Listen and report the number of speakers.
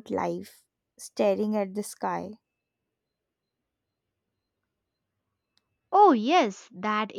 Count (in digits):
2